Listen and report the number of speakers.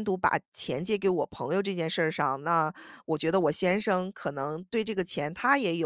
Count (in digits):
1